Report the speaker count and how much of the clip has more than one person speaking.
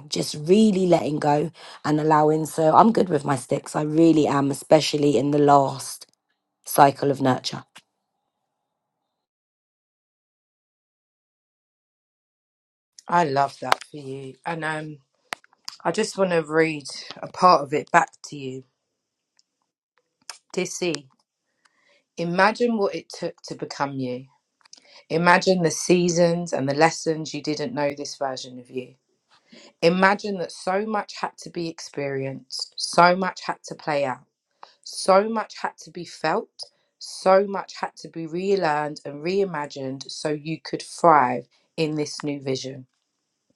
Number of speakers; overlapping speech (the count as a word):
two, no overlap